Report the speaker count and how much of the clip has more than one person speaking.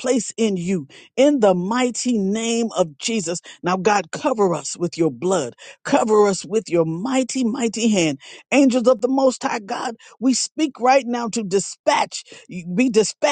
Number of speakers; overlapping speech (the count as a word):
one, no overlap